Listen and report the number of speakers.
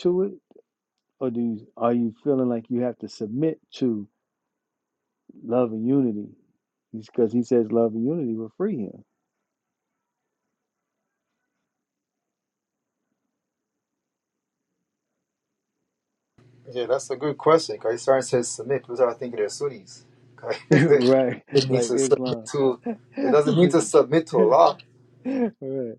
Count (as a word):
two